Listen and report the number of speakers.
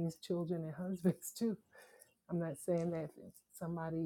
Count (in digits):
1